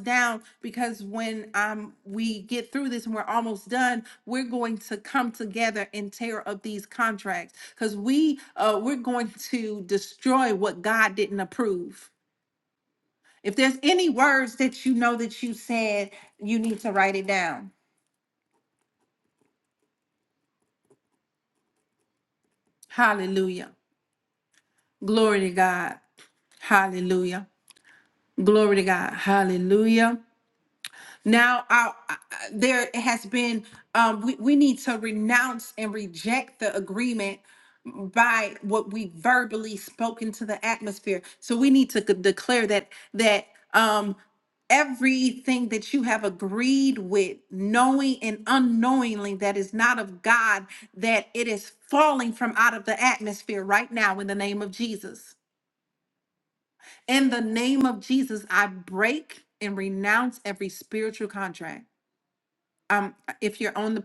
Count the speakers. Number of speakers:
one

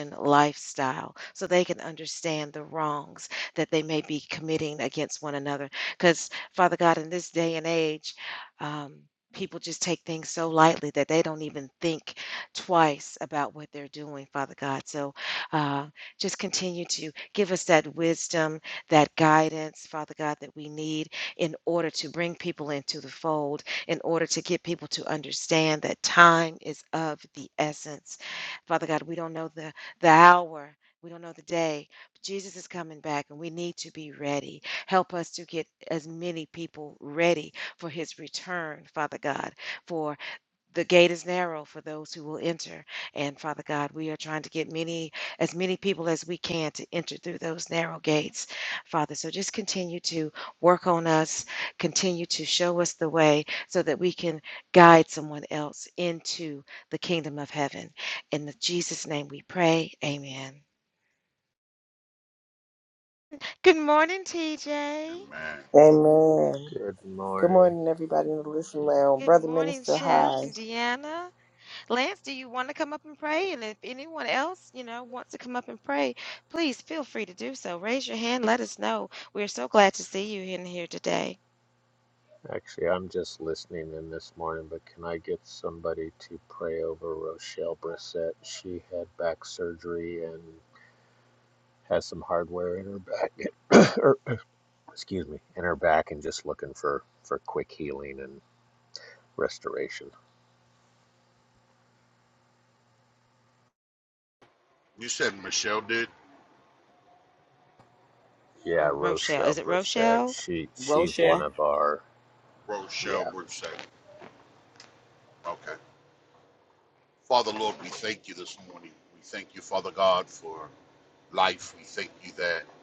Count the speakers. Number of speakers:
four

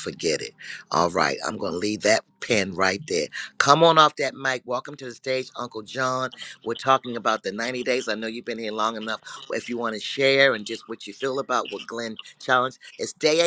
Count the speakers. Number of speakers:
one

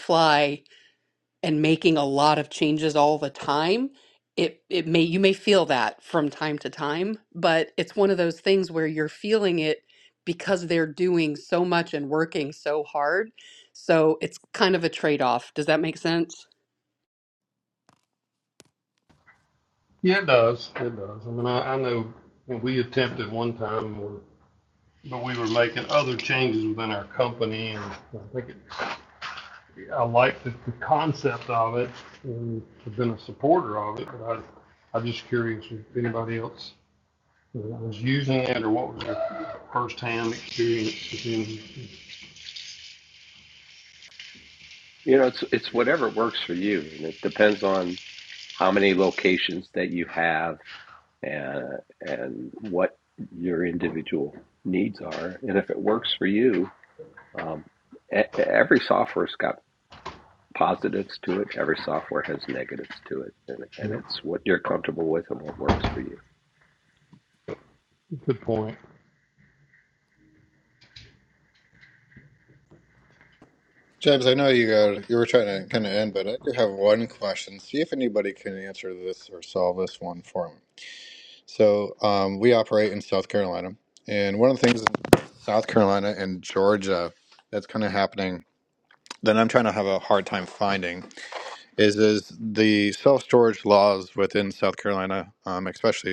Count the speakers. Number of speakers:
four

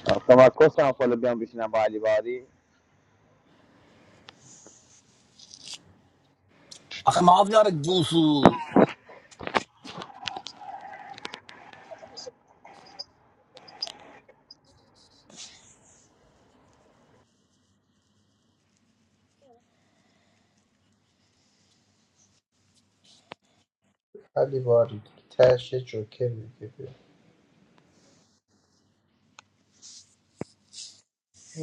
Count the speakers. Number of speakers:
three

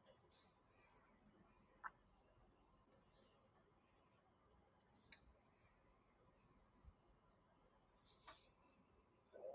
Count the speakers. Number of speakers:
zero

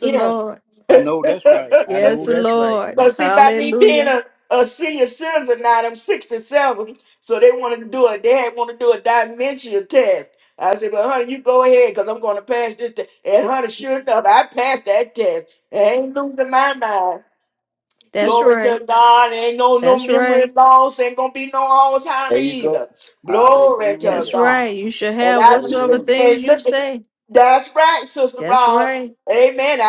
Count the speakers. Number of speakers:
three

